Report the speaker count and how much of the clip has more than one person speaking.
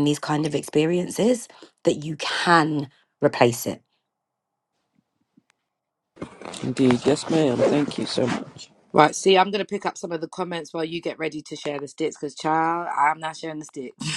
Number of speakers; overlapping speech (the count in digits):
3, no overlap